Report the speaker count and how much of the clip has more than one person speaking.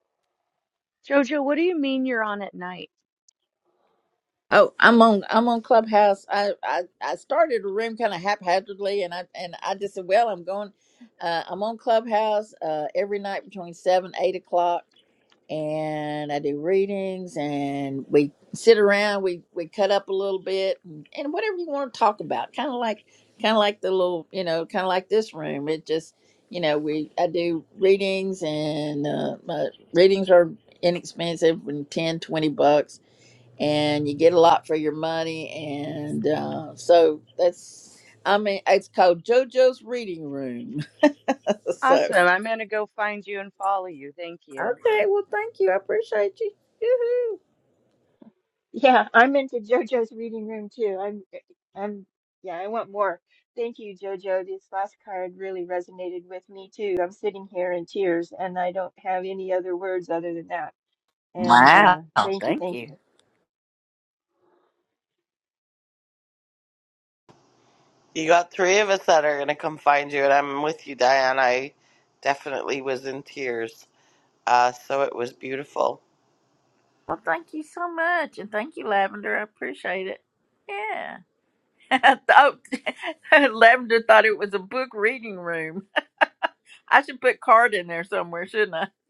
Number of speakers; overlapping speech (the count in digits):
4, about 2%